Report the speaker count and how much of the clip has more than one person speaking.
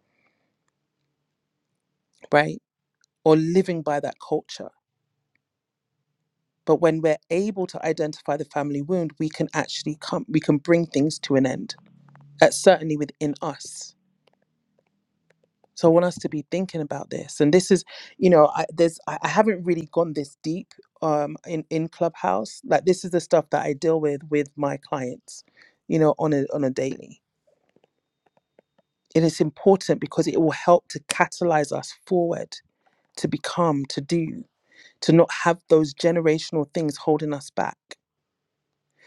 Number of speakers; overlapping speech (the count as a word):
one, no overlap